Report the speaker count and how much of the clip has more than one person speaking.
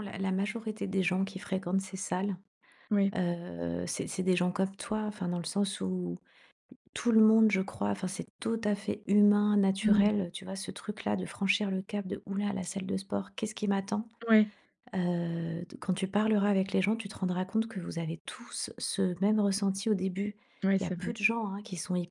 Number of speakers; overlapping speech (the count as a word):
two, about 3%